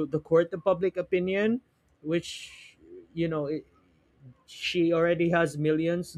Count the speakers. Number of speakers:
one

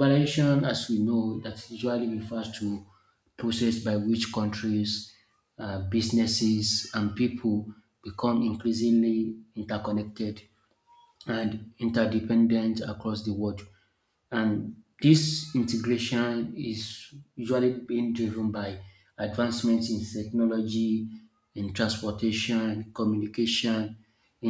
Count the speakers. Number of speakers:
one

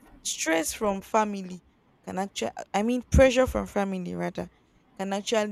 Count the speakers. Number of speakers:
one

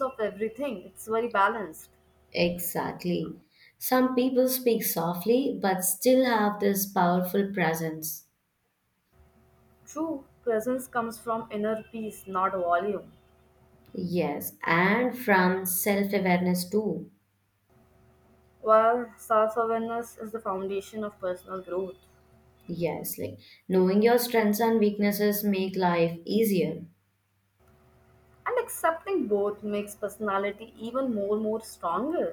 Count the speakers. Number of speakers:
two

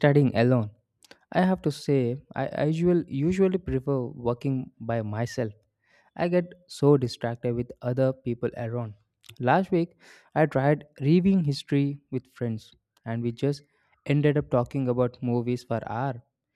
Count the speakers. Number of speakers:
one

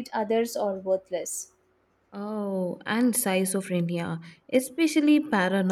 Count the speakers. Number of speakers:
two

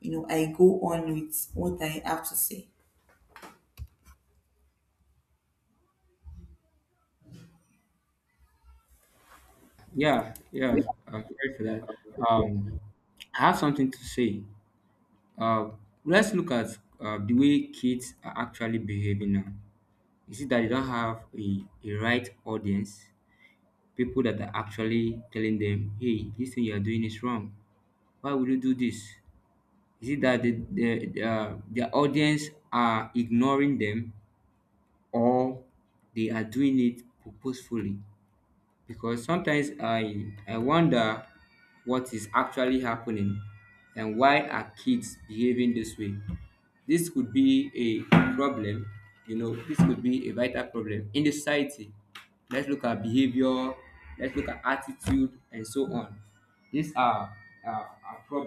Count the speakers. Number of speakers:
two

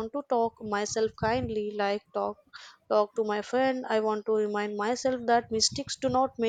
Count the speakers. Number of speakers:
one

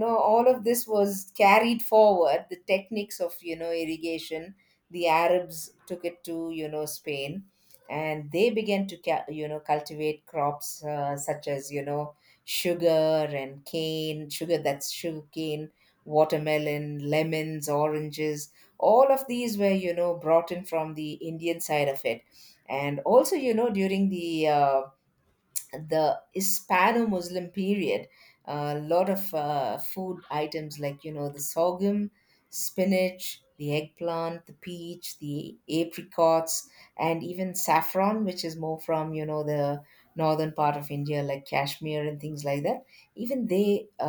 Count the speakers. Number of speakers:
one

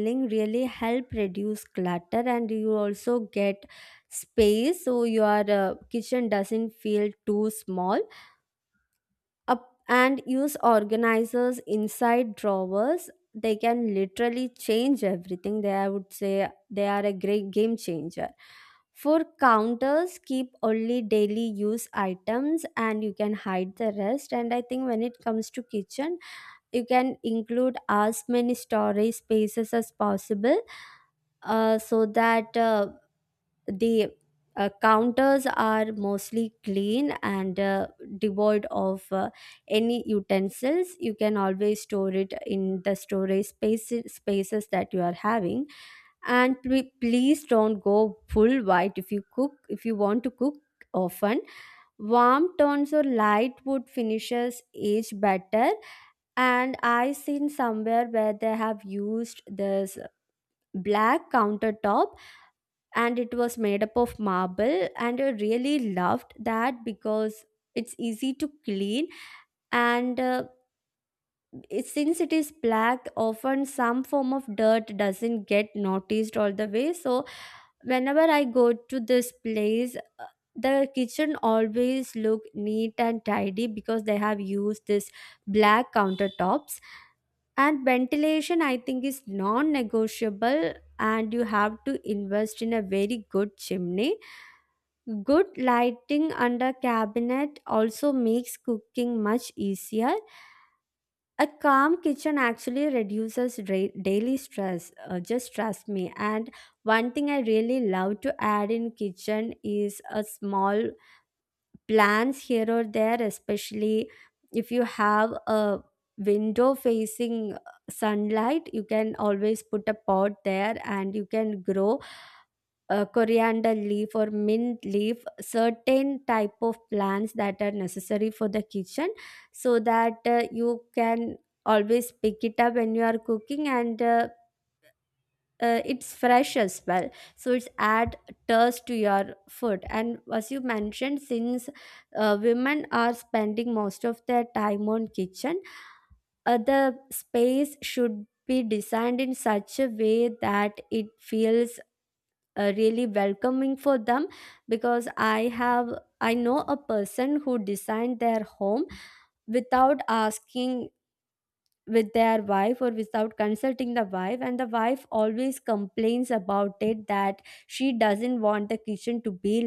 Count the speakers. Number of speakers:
one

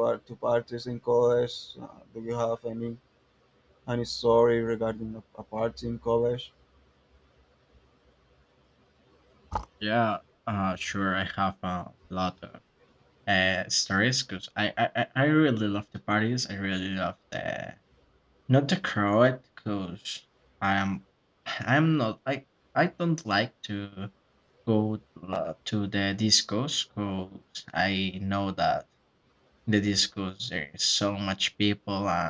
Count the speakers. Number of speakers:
two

